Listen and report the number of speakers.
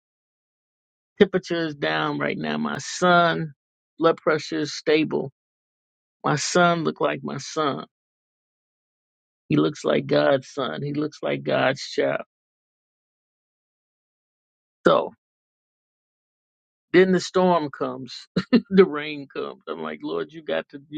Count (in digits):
1